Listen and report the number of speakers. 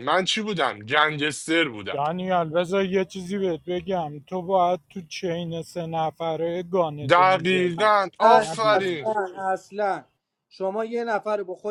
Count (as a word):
three